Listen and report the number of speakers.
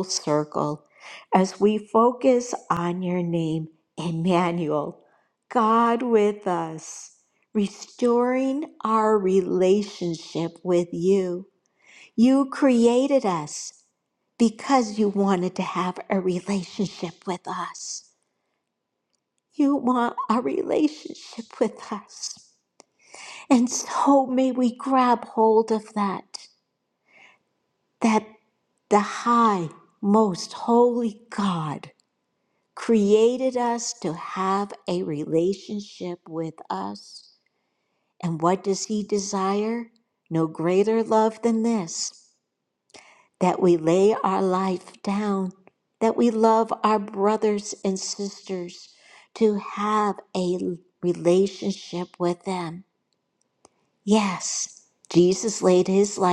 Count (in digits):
1